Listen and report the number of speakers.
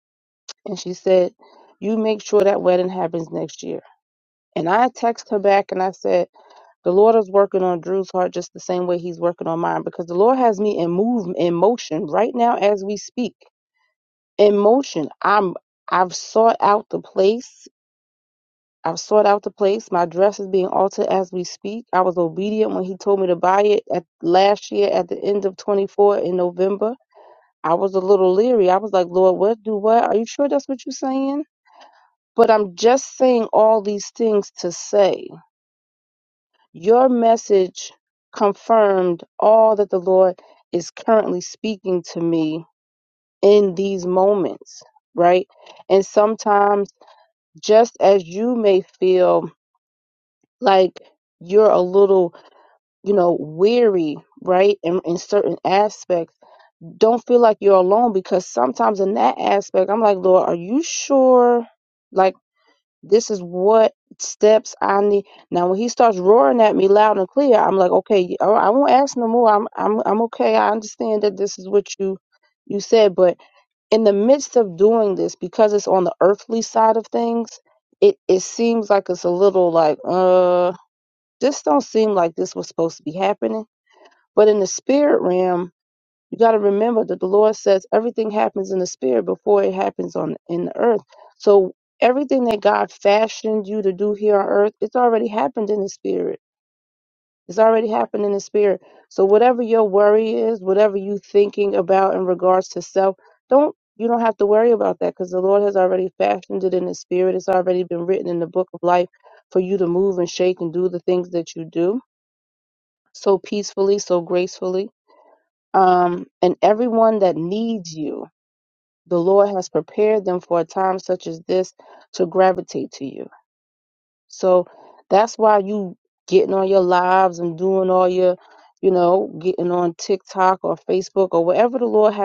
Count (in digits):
1